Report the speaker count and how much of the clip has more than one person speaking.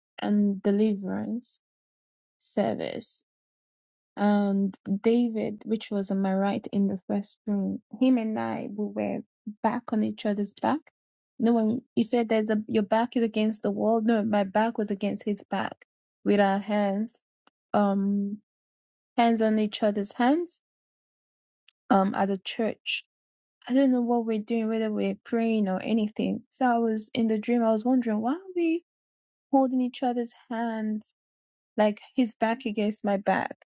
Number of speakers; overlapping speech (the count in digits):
1, no overlap